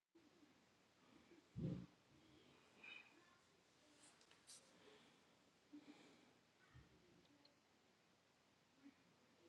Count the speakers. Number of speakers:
0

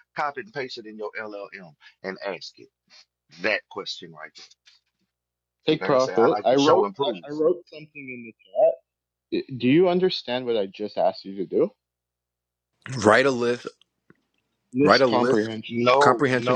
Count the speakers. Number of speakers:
3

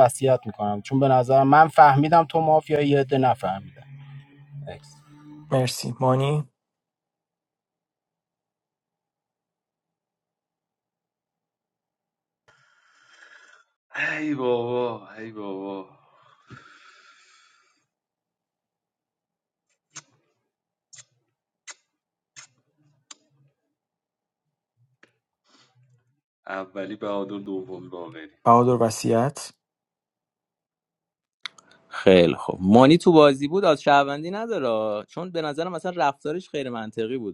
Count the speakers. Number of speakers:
4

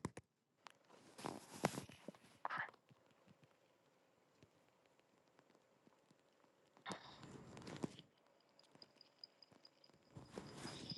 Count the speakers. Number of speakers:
0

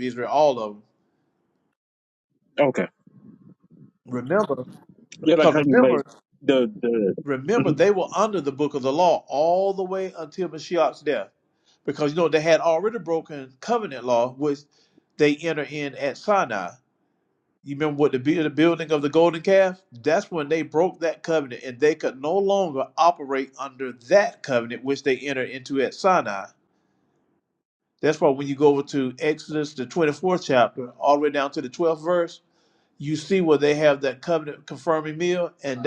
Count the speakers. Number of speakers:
2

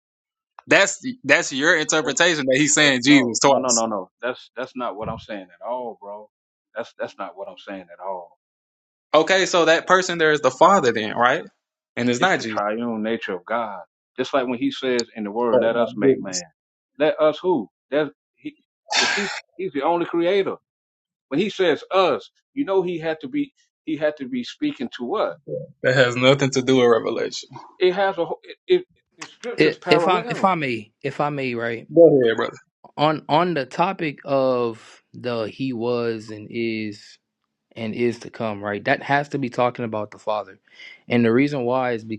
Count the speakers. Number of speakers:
3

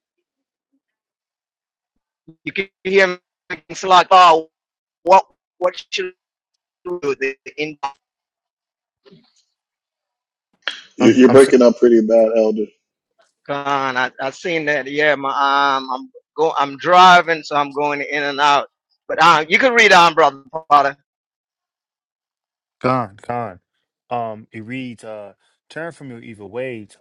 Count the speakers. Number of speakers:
3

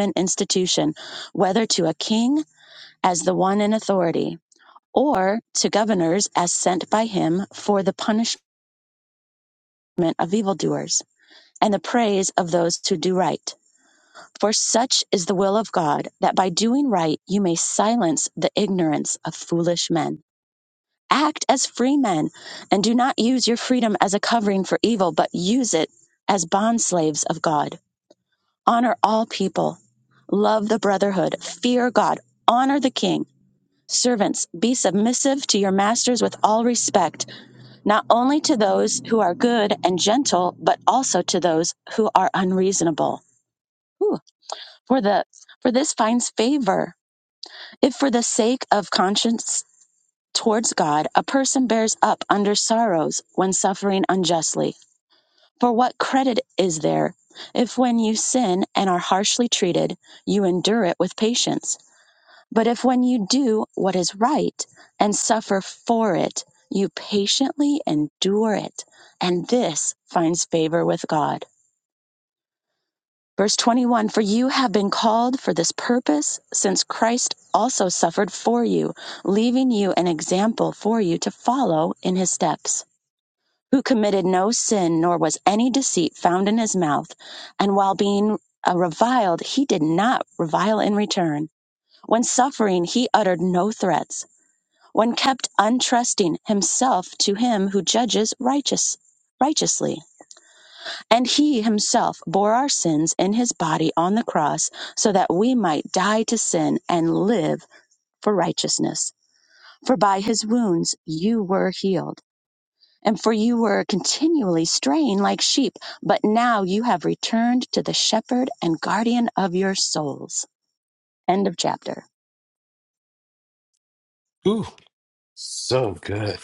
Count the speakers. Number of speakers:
2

